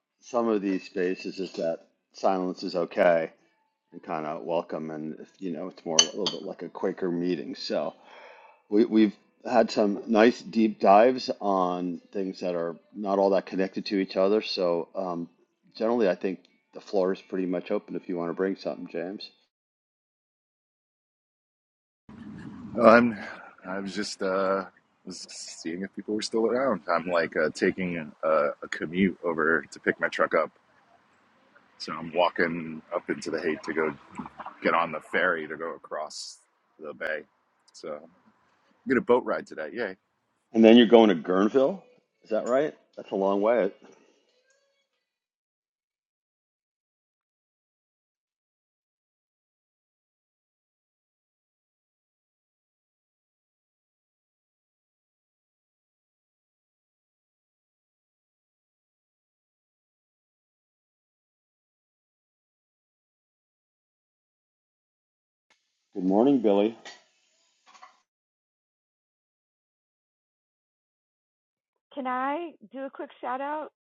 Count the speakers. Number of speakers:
three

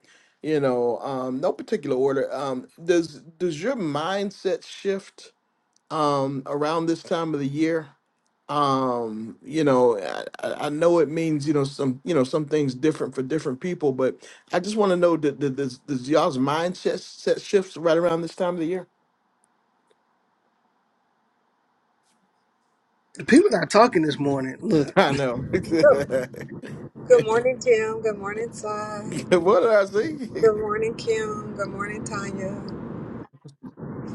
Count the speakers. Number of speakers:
three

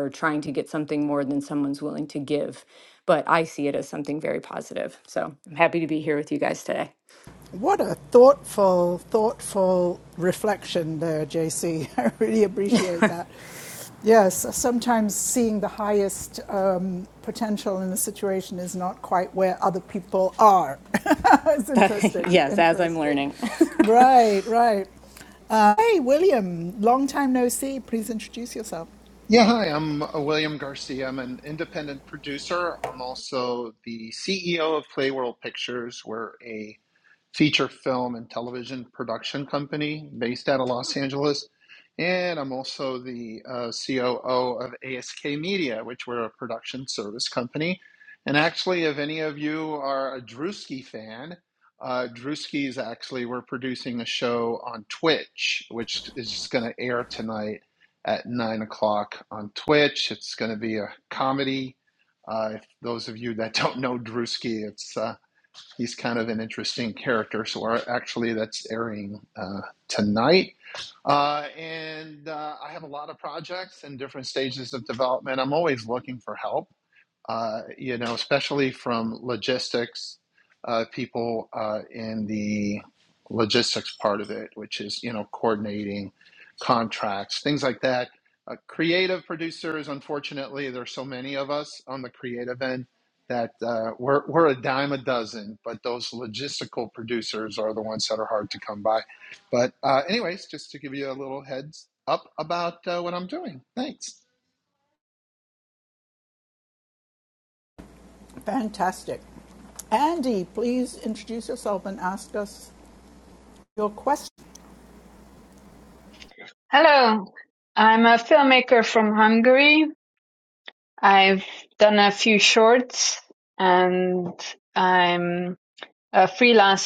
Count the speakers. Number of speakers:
four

